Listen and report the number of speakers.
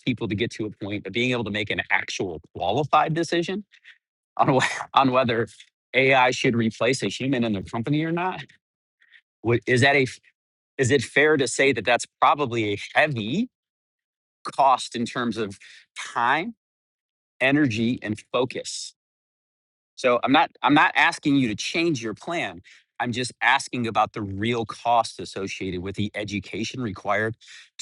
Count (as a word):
one